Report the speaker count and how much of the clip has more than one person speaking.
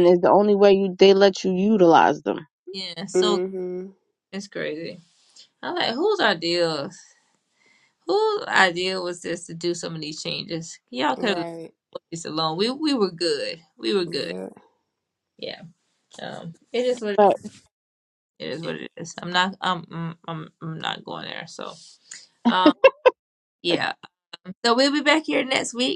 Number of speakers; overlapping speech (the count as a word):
three, about 3%